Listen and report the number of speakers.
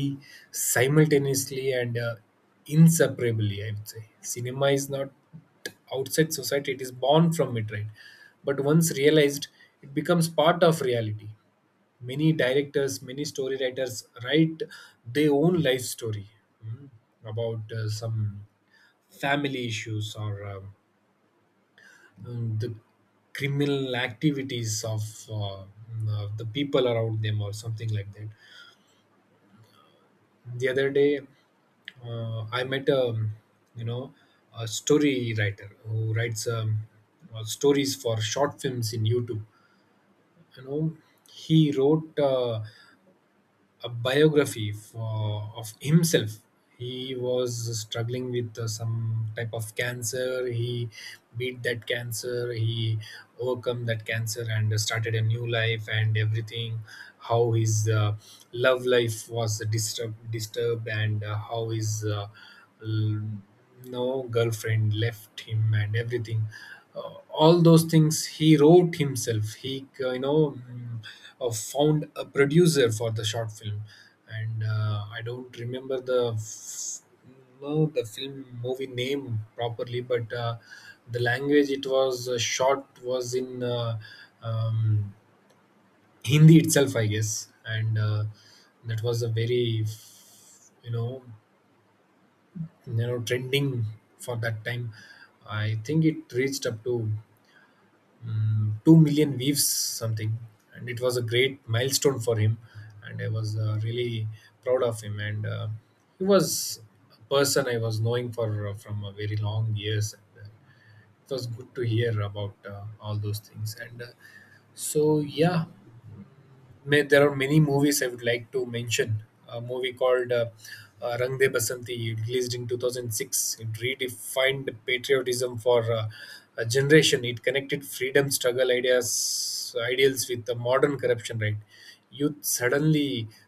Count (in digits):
1